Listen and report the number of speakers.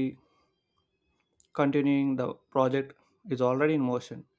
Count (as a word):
one